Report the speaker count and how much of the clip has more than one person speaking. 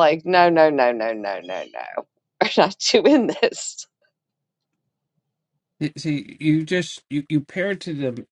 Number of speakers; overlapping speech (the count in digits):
2, no overlap